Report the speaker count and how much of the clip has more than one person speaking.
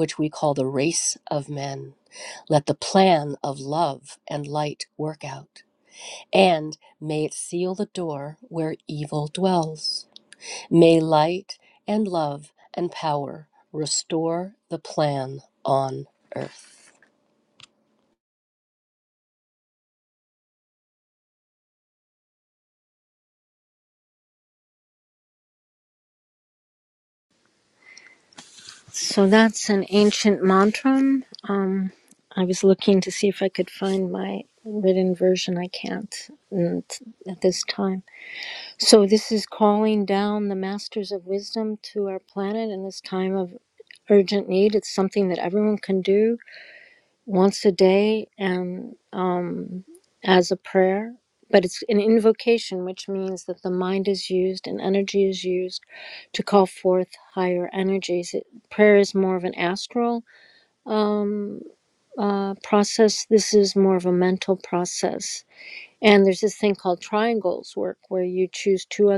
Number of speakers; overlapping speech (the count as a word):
two, no overlap